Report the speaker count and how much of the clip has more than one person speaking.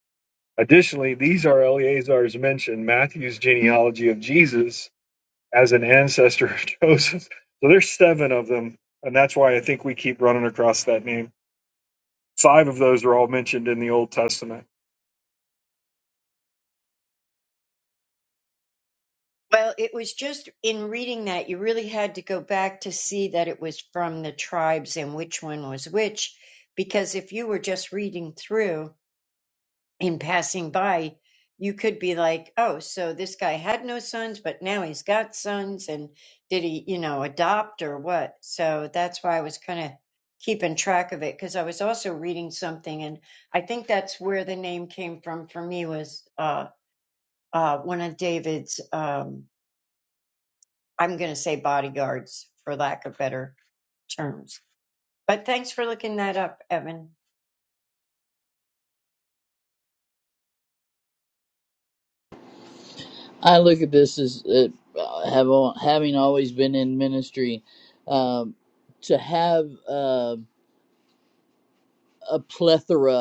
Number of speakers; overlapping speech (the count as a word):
three, no overlap